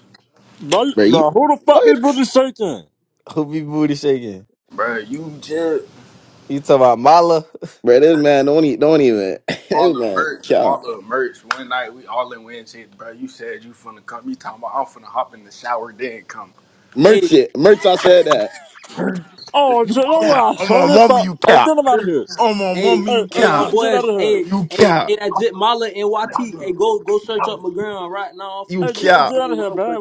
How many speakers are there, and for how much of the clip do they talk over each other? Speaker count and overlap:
five, about 30%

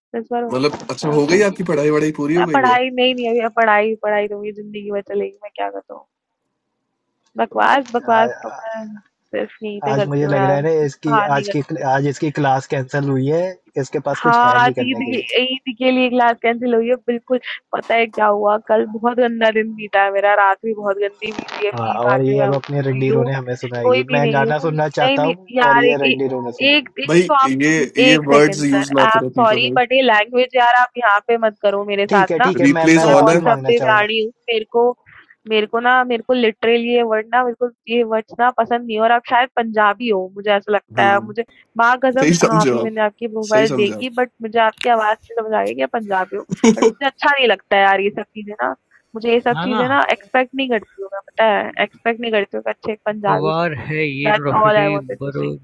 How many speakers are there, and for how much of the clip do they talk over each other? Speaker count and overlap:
four, about 28%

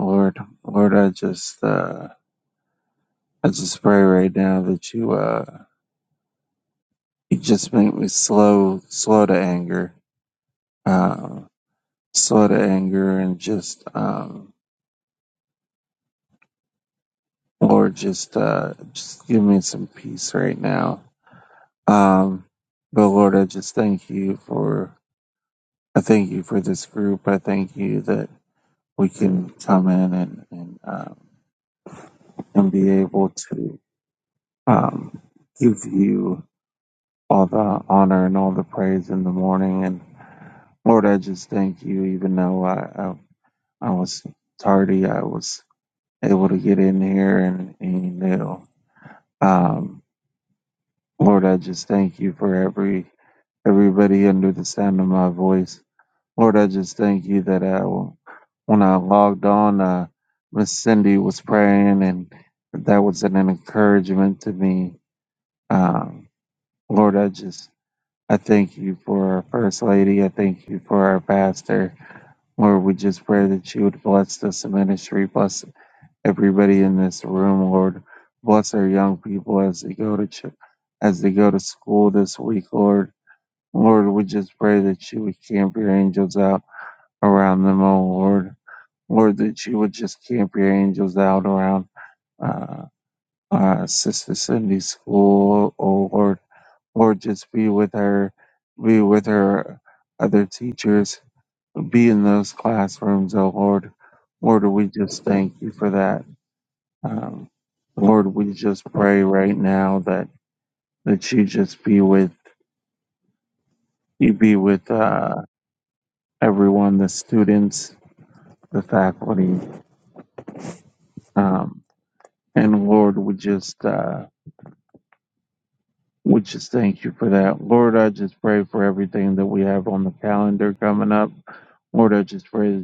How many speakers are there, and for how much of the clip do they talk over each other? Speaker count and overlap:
one, no overlap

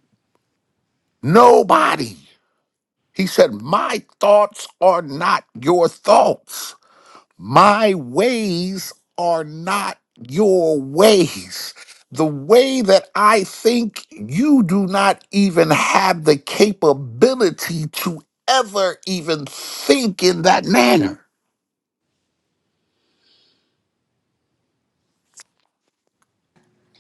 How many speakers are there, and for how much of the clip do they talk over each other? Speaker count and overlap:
one, no overlap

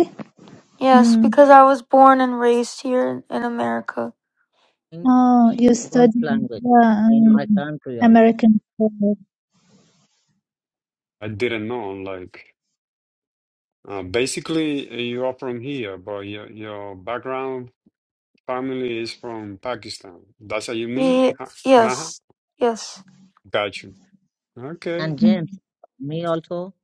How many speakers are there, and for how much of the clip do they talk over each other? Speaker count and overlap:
four, about 11%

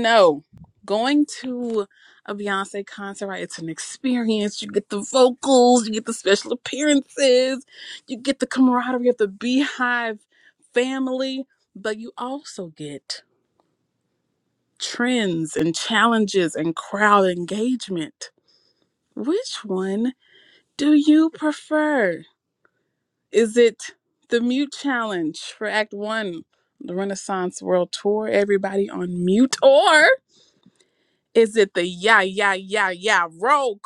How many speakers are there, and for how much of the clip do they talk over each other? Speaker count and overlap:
one, no overlap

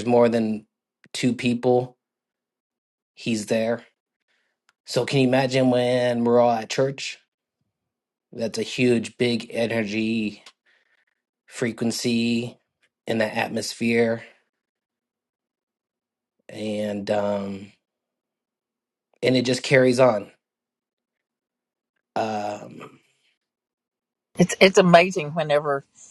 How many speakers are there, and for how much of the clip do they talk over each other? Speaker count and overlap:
two, no overlap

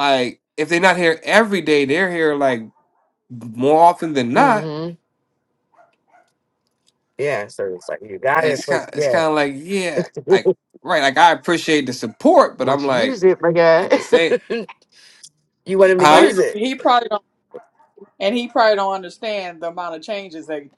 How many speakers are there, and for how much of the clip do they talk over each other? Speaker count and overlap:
three, about 12%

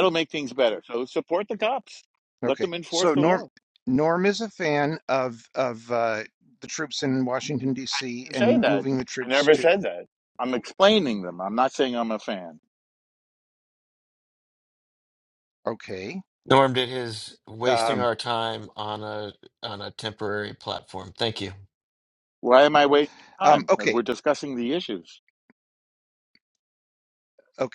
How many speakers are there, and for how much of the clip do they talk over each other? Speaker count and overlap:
three, about 11%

